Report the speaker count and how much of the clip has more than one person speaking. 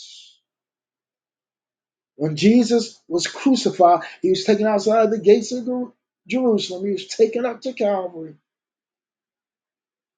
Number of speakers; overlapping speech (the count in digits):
1, no overlap